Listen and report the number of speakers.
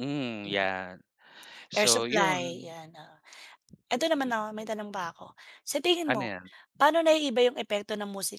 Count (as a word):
two